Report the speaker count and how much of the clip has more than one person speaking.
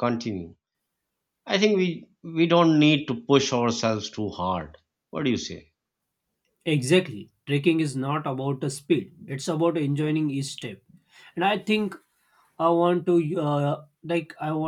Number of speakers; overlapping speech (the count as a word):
two, no overlap